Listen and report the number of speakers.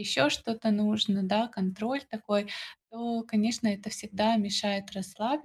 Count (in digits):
1